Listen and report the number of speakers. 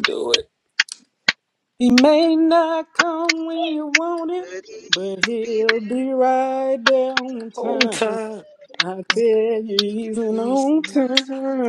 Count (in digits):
2